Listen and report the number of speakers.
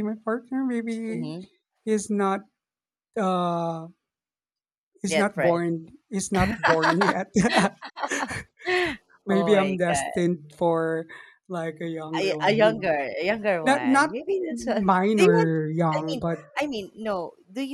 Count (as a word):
two